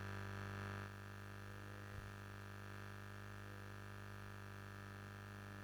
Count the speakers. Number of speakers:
0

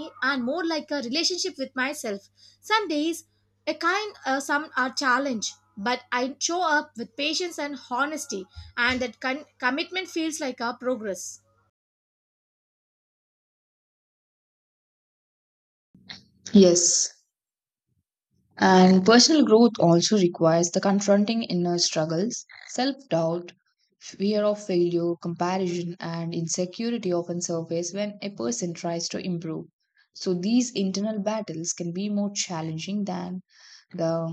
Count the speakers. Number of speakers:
2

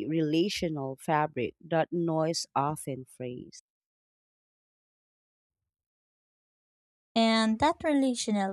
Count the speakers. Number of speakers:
2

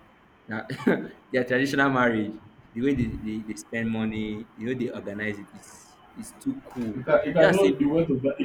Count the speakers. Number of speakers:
2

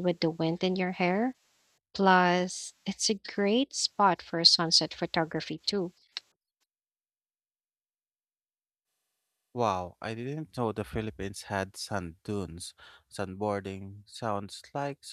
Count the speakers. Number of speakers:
2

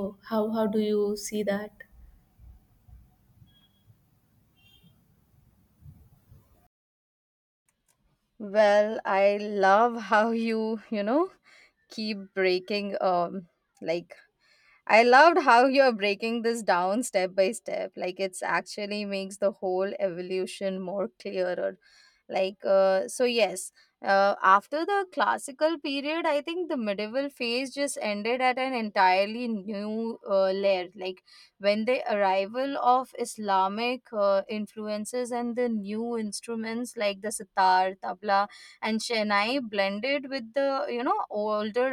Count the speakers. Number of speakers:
2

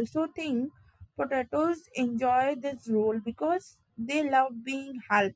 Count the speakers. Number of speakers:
1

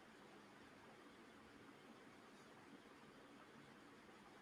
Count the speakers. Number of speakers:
0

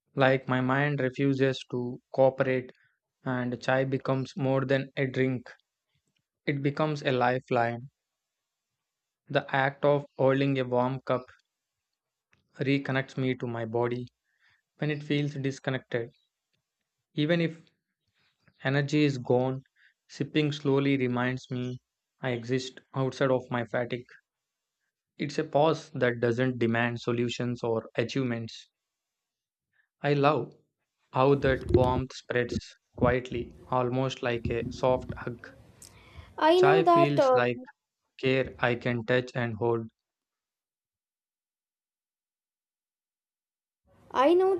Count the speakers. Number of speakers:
2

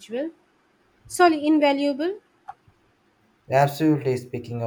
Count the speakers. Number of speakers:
2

